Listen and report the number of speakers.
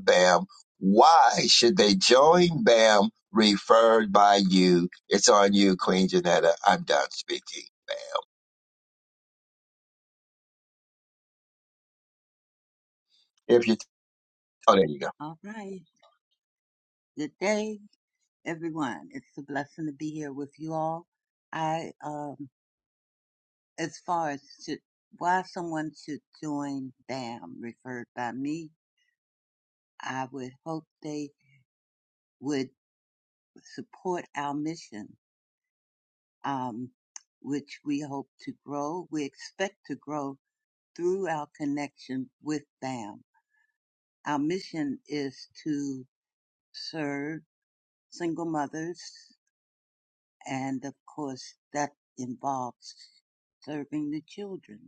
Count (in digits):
2